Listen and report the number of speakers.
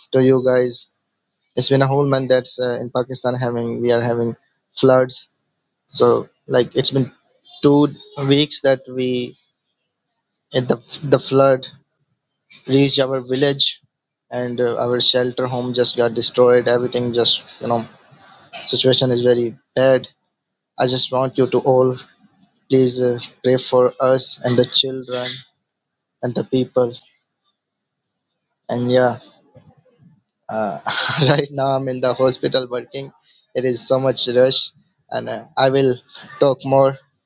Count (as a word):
one